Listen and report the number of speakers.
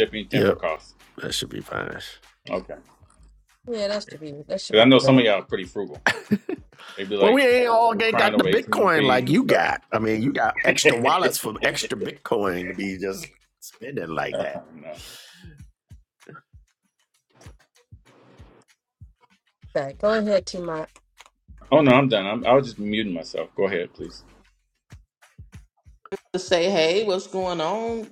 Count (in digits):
4